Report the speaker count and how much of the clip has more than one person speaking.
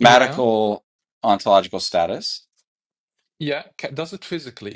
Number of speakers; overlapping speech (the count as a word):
two, about 9%